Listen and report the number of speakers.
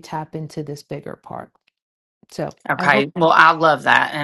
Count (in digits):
2